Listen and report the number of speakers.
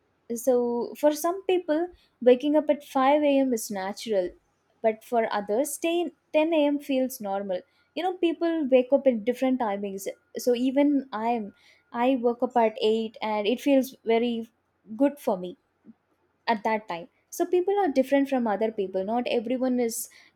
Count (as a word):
one